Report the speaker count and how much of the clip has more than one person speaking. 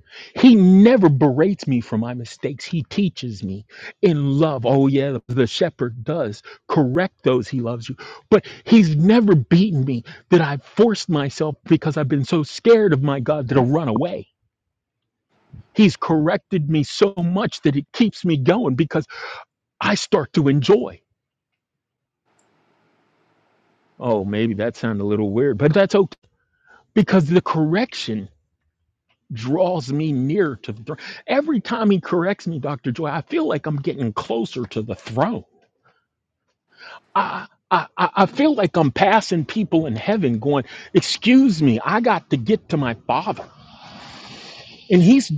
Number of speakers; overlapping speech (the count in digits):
1, no overlap